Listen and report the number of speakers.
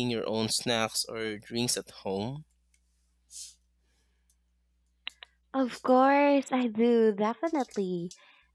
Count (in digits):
2